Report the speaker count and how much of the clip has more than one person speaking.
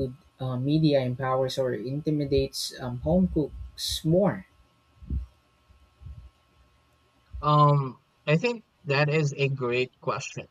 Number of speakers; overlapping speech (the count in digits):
2, no overlap